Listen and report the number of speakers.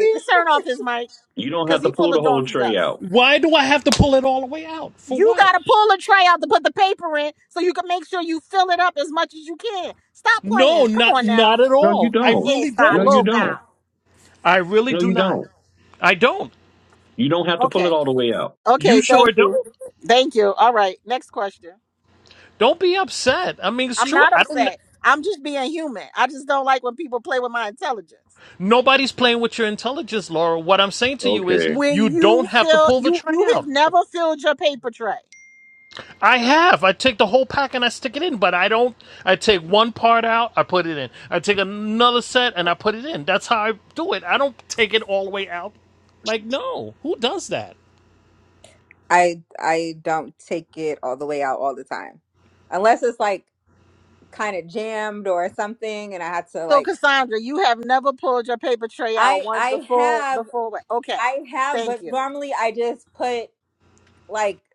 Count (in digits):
4